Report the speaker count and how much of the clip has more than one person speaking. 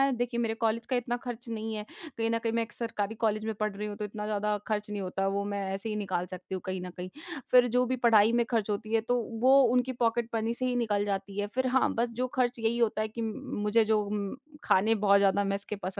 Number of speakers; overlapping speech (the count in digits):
1, no overlap